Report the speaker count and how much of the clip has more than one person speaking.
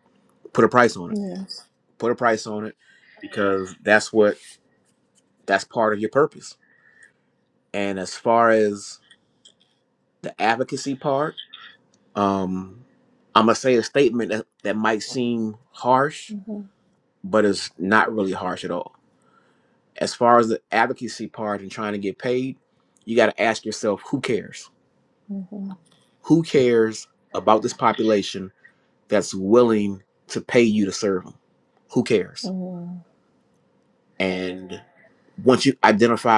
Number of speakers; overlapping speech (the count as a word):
two, under 1%